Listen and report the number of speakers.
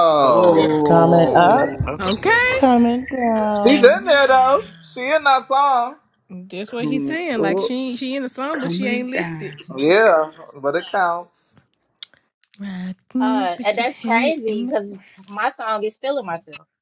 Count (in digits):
5